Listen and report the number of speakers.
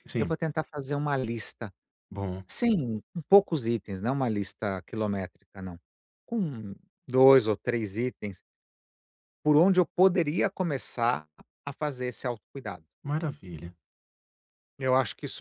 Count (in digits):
2